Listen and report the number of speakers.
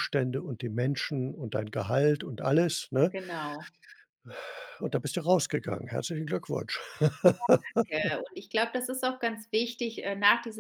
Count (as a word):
two